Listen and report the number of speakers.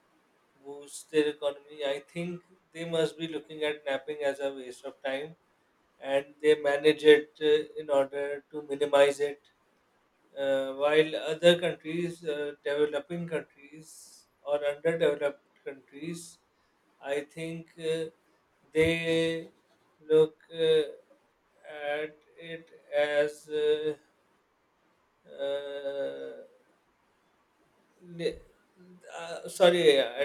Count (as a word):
one